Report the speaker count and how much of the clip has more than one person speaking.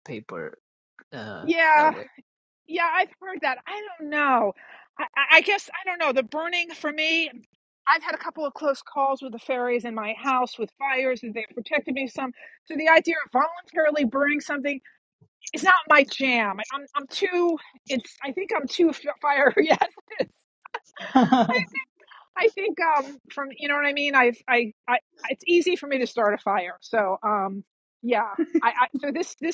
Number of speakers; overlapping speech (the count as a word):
two, about 2%